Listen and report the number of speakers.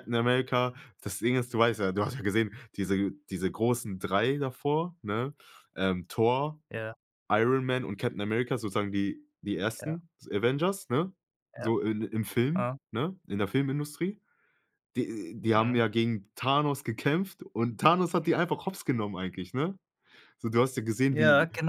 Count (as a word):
two